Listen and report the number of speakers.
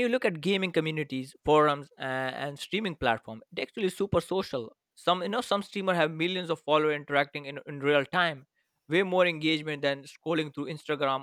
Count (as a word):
one